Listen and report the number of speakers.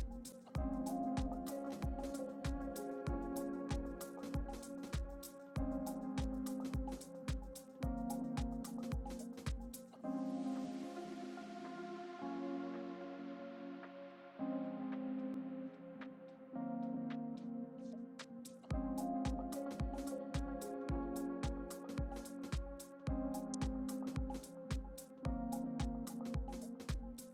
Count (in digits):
0